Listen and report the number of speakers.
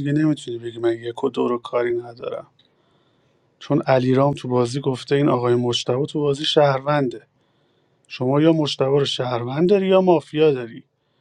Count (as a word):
one